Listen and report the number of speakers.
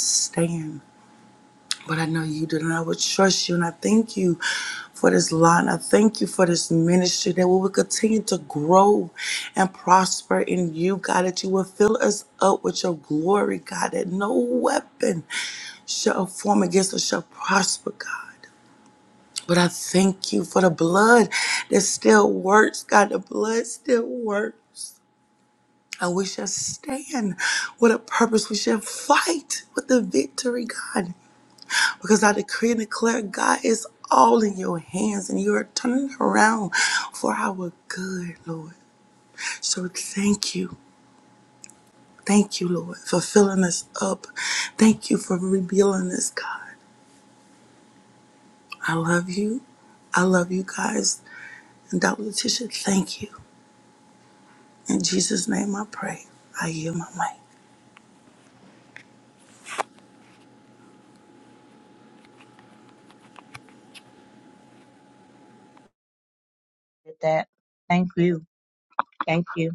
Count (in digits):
2